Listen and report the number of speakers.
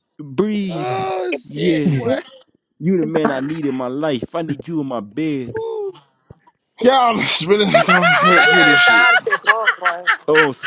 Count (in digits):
4